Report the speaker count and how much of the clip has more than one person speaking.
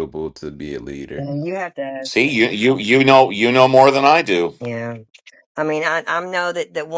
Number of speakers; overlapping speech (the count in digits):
3, about 6%